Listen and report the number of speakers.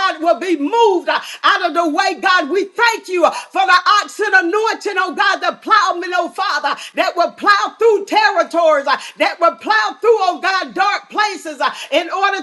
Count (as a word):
one